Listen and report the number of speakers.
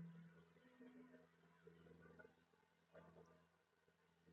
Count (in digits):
0